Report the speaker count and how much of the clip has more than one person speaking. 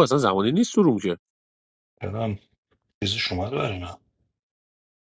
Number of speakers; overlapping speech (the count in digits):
2, no overlap